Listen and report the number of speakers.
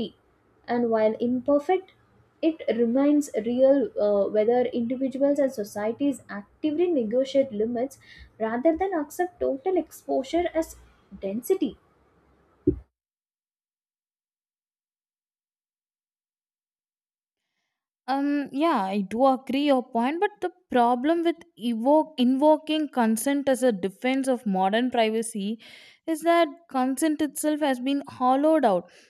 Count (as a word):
two